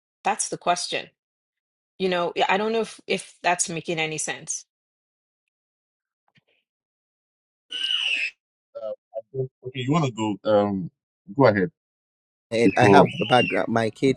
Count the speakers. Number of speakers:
3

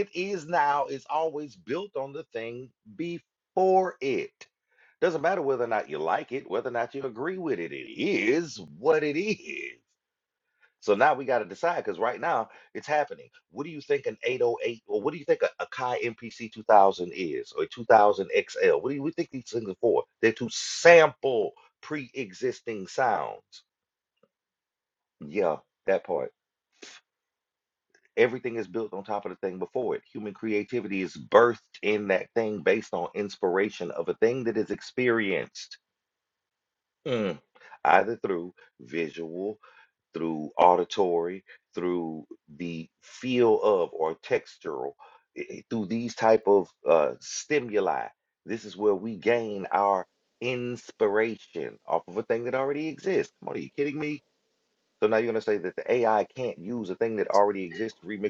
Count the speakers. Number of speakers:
1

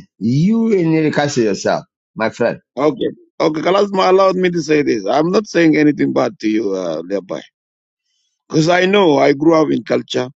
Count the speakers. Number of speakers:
2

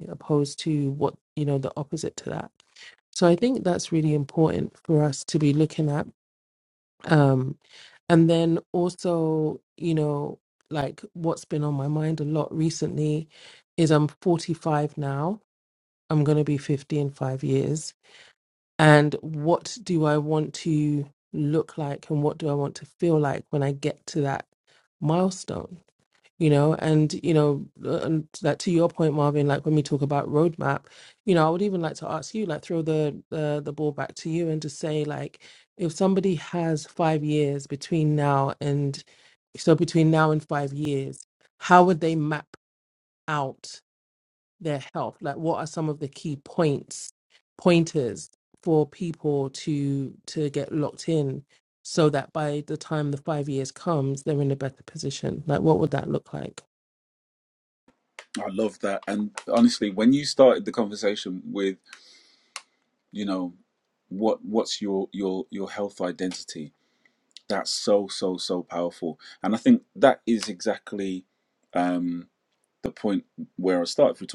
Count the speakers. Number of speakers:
2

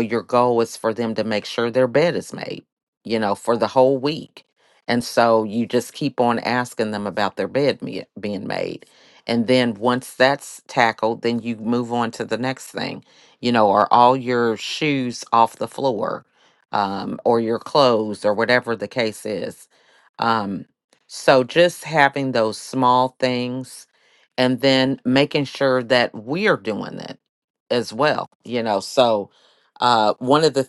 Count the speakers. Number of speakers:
1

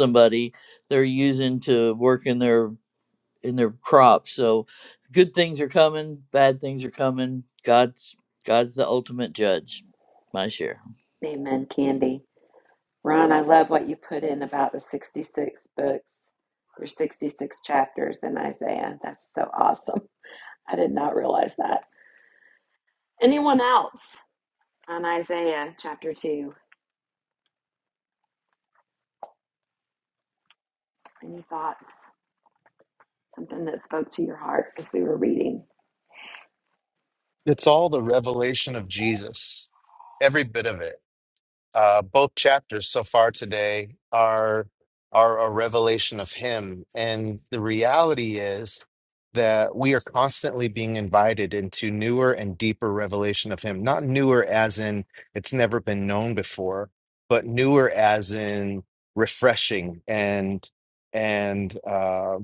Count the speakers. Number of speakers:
3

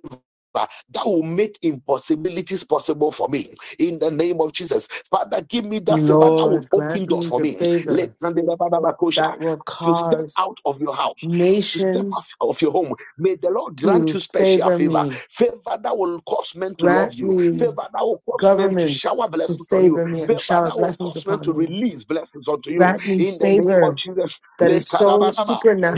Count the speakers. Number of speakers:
2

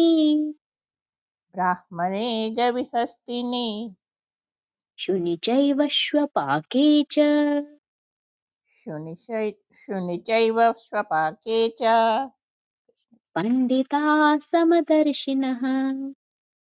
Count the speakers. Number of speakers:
2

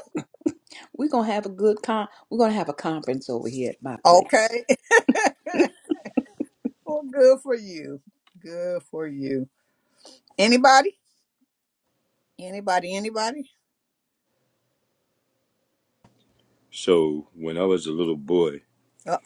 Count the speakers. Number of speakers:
3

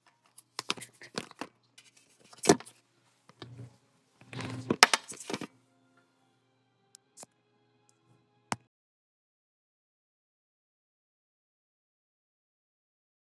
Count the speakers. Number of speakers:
0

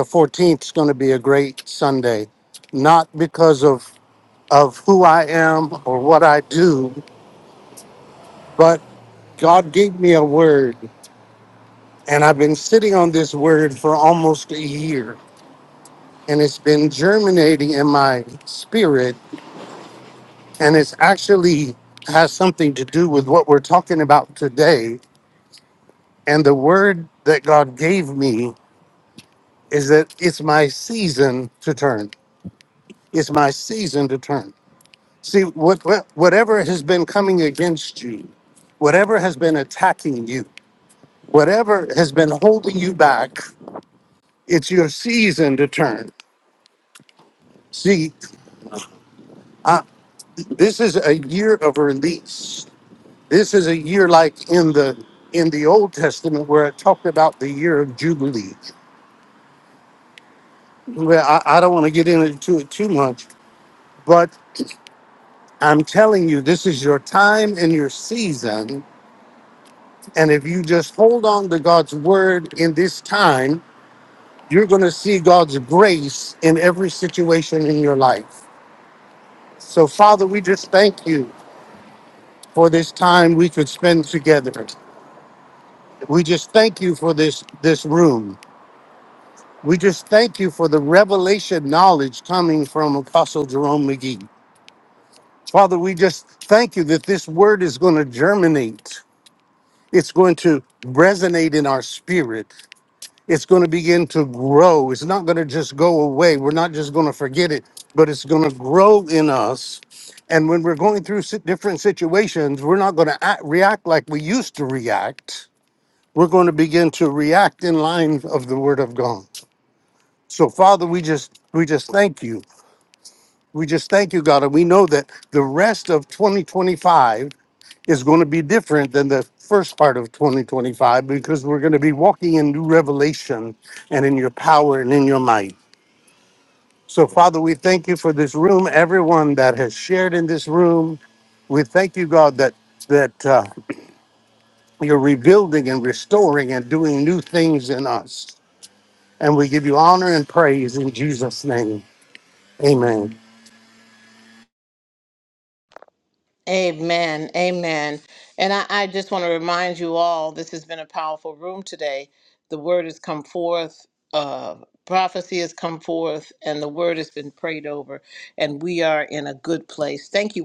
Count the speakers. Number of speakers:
2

